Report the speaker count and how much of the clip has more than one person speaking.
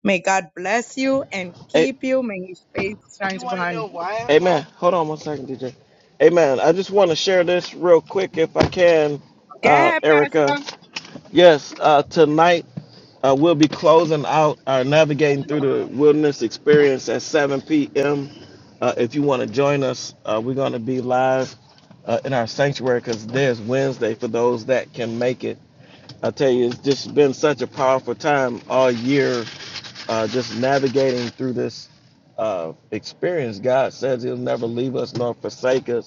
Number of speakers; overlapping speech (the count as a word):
two, about 3%